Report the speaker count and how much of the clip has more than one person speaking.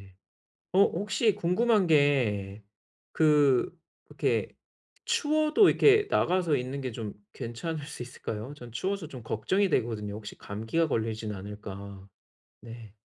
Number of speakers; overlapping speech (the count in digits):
1, no overlap